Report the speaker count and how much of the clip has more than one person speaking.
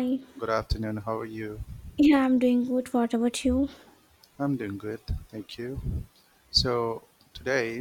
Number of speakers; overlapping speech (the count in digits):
2, no overlap